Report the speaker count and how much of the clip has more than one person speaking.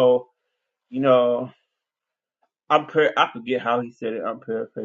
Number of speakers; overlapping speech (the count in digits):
1, no overlap